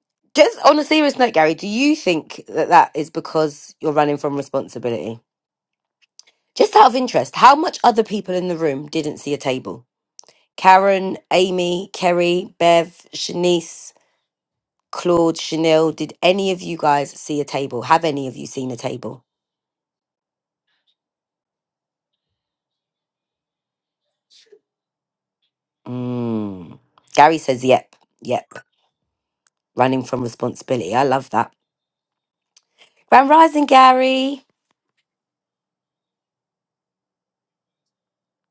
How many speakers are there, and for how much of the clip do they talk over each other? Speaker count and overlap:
1, no overlap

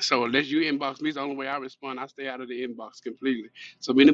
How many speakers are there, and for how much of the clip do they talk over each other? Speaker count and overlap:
1, no overlap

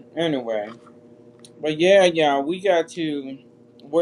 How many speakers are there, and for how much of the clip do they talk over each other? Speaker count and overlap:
1, no overlap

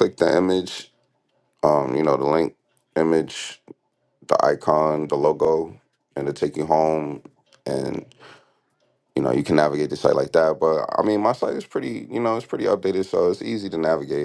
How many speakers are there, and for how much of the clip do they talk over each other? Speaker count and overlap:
1, no overlap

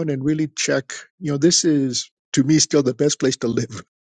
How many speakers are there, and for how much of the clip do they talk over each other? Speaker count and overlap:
1, no overlap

